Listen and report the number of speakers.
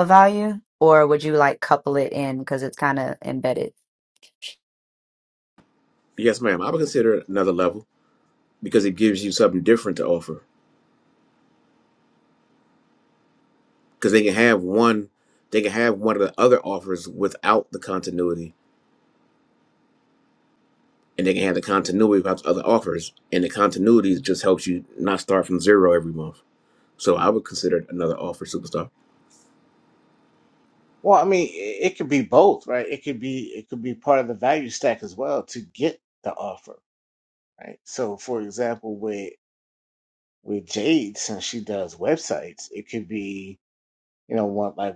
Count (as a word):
three